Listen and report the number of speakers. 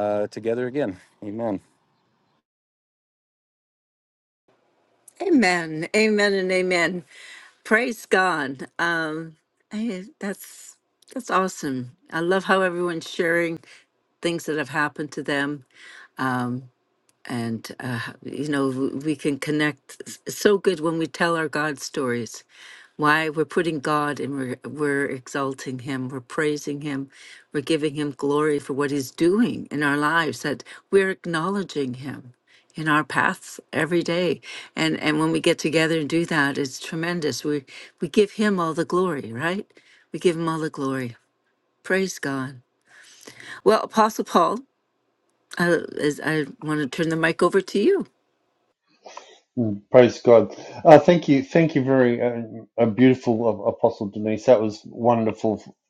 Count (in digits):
3